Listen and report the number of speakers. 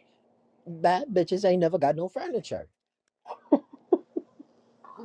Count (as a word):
one